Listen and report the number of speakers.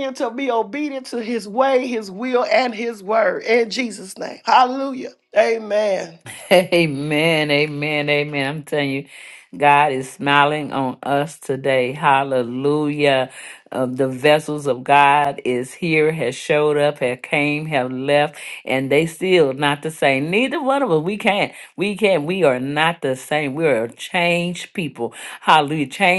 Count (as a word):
two